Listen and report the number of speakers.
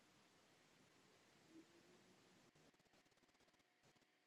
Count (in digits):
0